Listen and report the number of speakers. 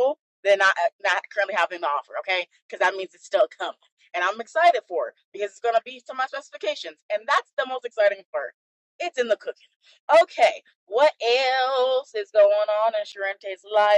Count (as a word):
one